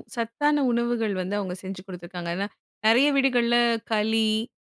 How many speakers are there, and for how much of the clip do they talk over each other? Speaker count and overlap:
1, no overlap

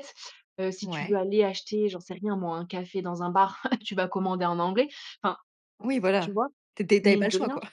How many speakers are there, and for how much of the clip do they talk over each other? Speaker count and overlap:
2, about 12%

